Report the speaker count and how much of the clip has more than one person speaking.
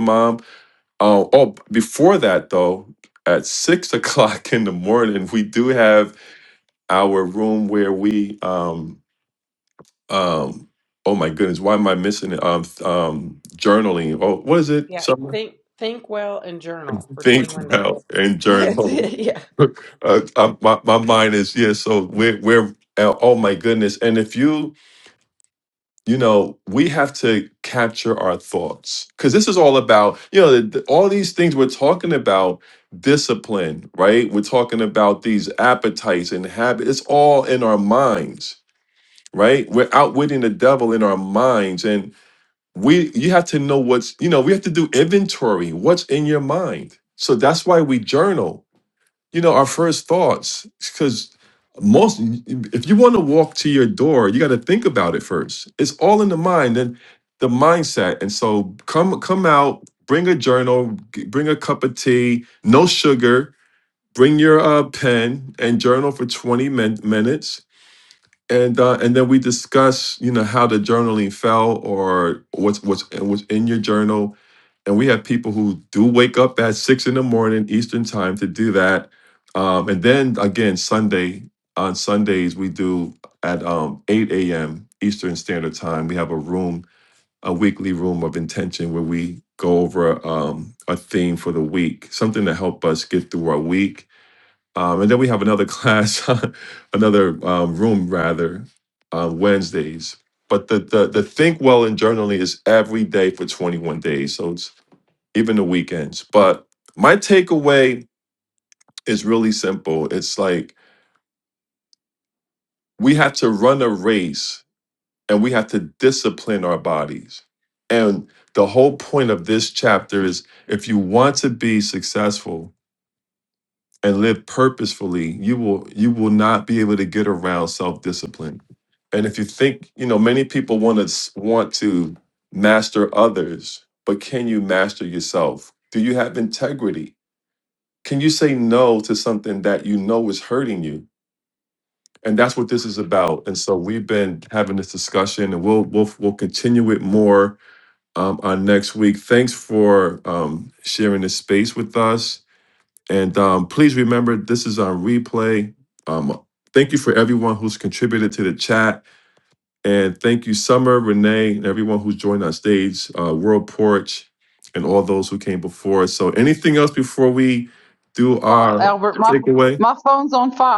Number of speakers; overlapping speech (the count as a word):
three, about 1%